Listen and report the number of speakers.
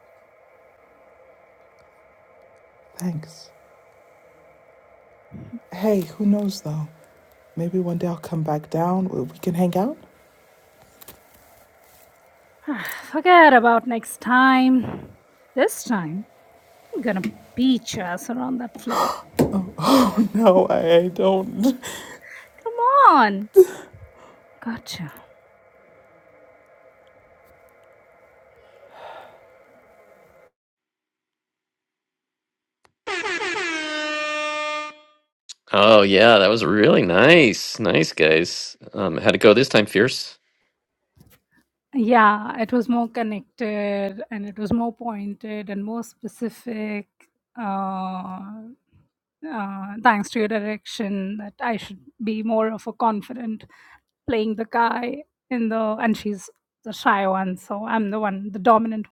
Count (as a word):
three